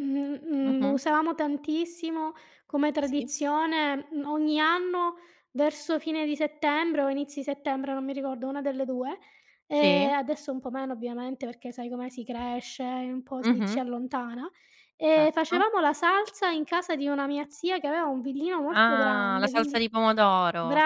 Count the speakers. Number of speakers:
2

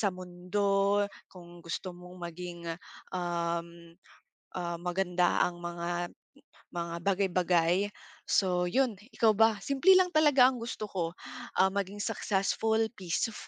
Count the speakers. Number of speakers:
1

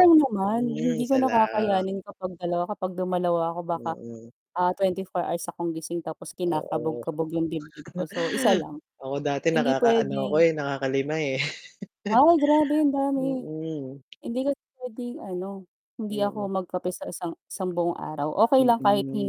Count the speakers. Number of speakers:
2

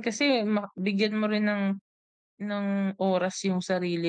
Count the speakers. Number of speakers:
1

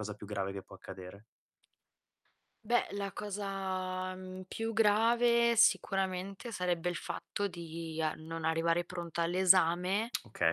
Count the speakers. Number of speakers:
2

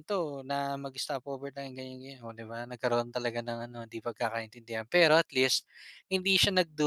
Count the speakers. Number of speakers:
1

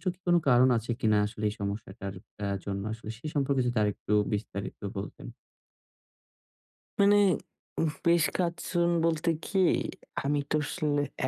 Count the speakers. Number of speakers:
2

